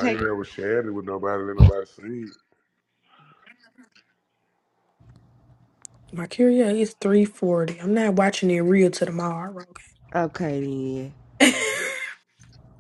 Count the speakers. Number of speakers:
3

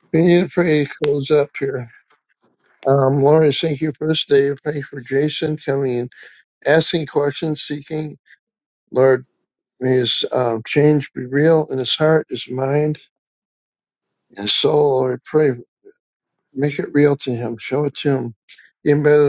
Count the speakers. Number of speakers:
1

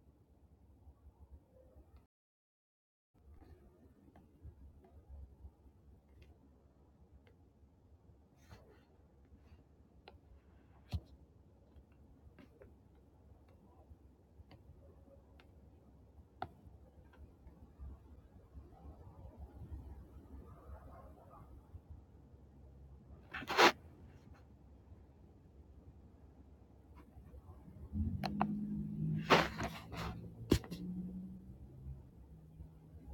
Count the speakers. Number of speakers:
0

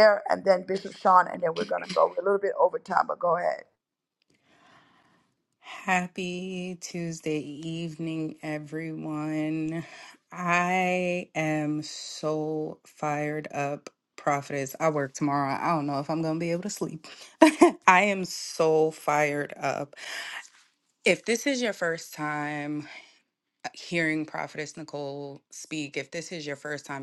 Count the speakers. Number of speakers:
2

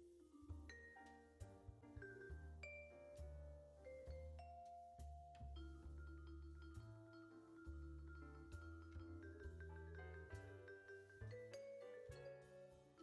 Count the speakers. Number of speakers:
0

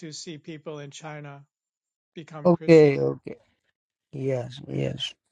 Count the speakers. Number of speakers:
2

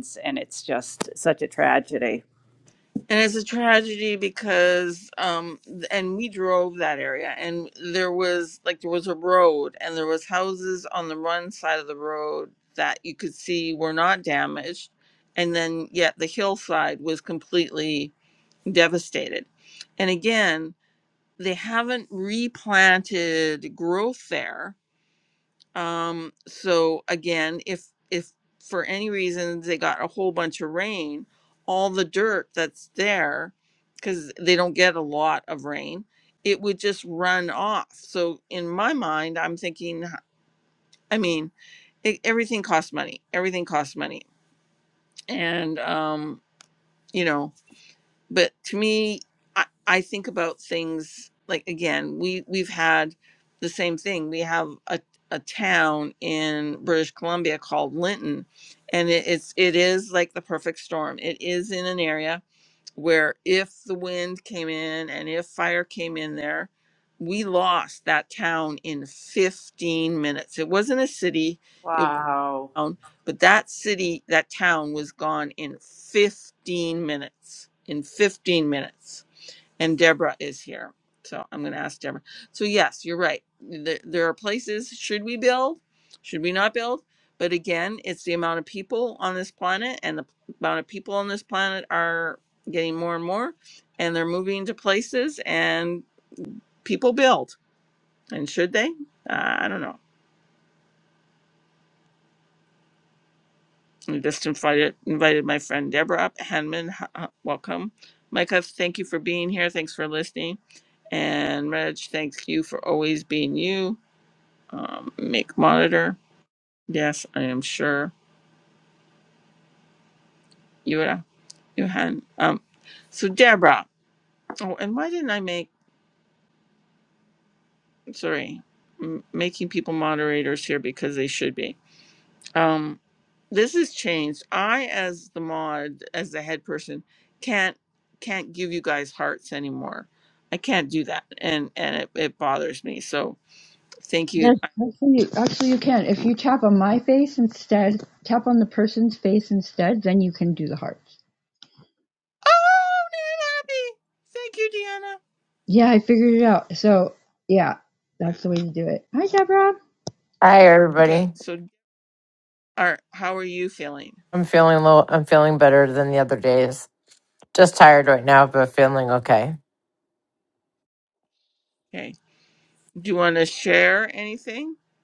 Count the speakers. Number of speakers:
4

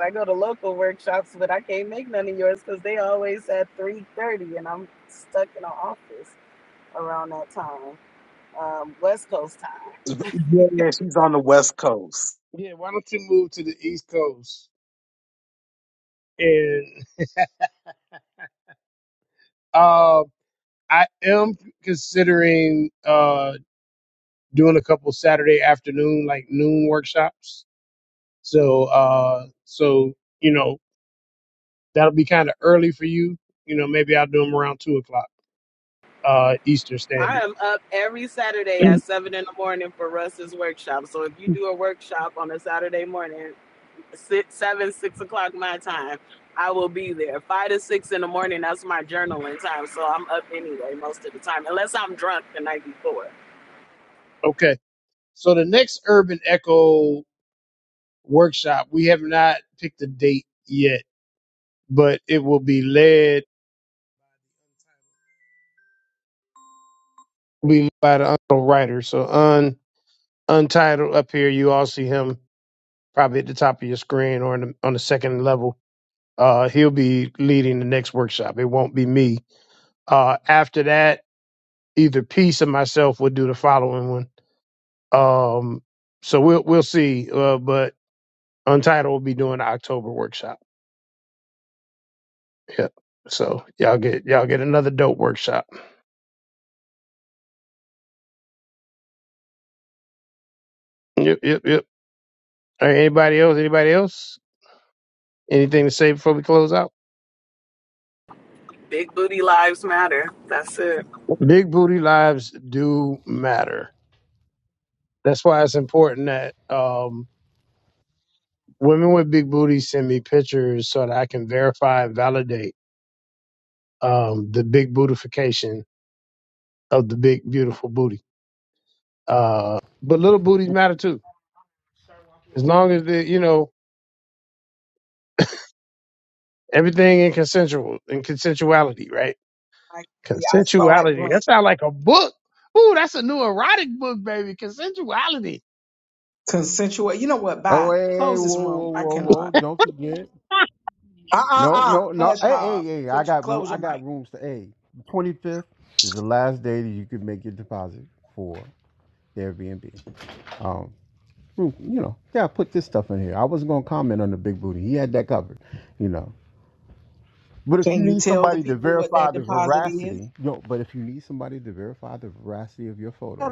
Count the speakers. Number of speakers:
5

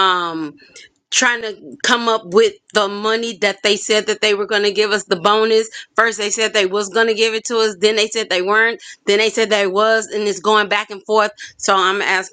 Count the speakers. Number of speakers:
1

